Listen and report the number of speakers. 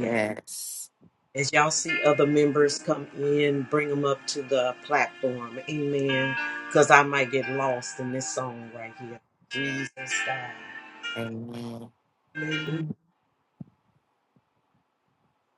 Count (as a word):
two